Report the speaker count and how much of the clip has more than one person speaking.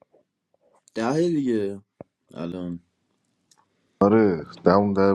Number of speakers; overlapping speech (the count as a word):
two, no overlap